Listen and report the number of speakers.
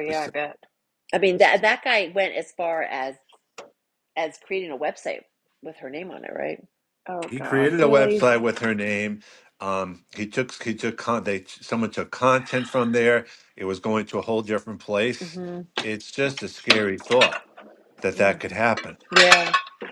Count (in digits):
3